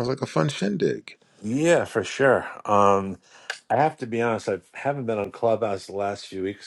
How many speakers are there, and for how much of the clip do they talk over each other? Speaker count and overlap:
two, no overlap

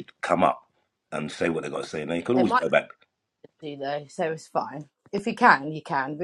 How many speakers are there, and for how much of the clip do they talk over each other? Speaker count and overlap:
two, about 5%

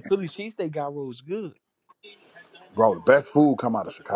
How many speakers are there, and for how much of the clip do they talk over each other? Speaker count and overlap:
two, no overlap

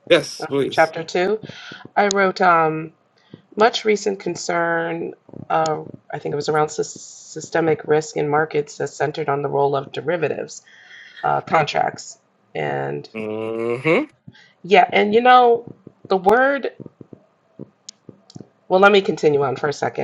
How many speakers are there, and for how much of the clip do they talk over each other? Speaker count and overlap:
two, about 2%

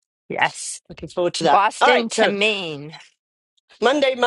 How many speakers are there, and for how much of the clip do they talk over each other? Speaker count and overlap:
two, about 21%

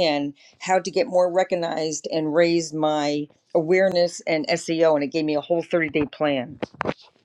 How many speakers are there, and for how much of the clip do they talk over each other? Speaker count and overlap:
one, no overlap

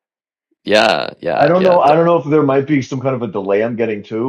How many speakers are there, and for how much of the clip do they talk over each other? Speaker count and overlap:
two, about 14%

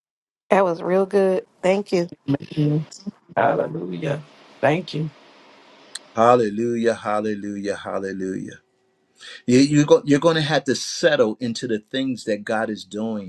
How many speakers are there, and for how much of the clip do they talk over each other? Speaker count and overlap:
three, no overlap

